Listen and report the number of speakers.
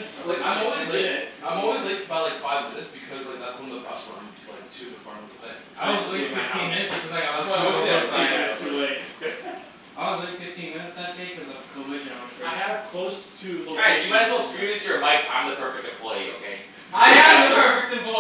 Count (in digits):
4